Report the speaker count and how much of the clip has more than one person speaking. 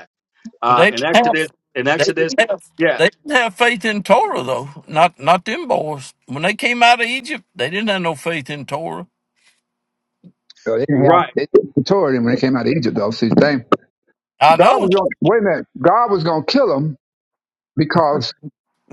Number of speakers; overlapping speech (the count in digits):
3, about 10%